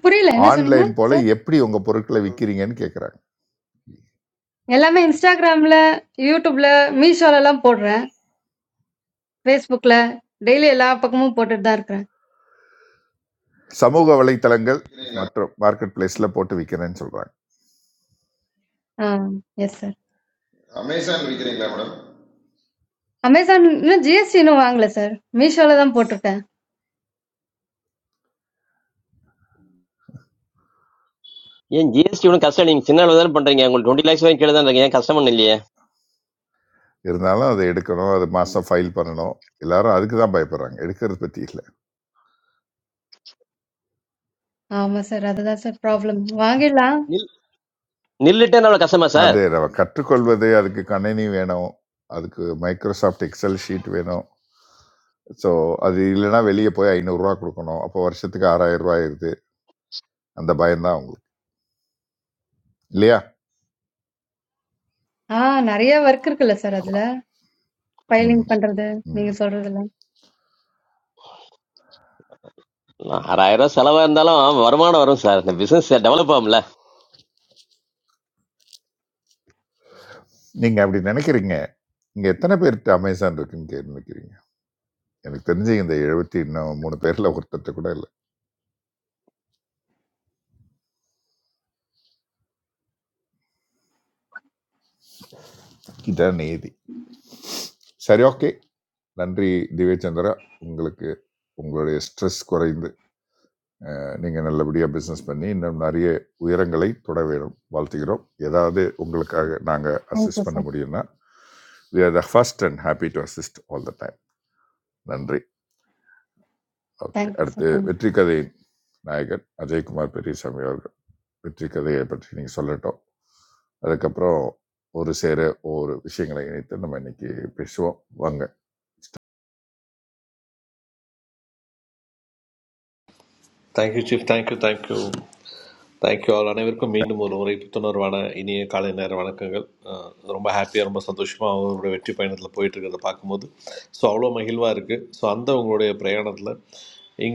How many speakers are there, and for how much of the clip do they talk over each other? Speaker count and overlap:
5, about 2%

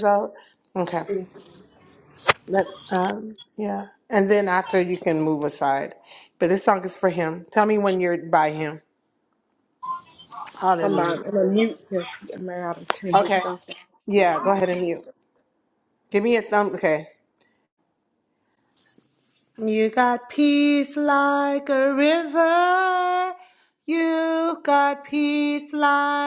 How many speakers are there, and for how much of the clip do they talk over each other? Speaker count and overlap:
2, about 4%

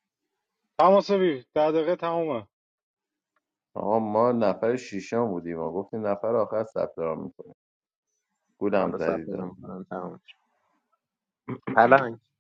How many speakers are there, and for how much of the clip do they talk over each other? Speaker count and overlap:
3, about 6%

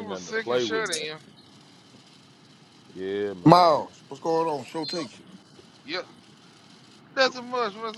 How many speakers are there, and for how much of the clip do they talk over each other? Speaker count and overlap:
3, about 18%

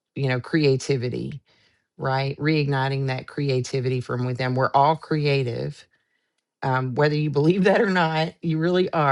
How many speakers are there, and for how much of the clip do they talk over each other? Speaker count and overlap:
1, no overlap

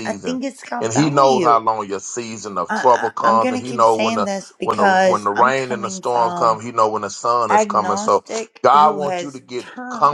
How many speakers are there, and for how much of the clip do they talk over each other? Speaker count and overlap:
2, about 65%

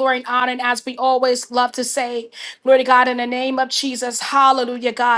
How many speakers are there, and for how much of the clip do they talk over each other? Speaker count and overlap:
1, no overlap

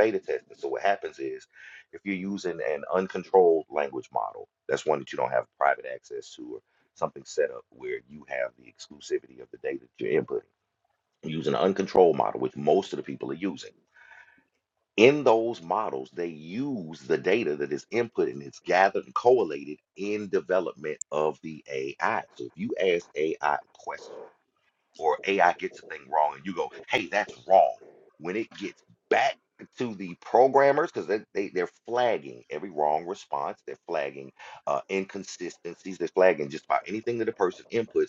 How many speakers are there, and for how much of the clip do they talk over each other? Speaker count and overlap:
1, no overlap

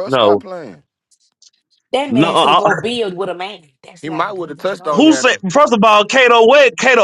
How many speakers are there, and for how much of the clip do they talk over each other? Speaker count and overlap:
3, about 33%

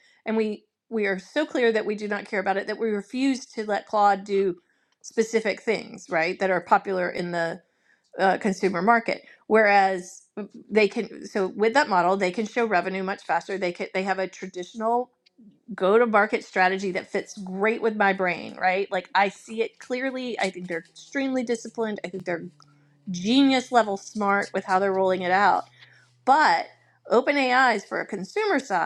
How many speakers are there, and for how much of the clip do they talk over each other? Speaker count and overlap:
1, no overlap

